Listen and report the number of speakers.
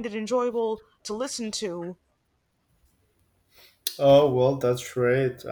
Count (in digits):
2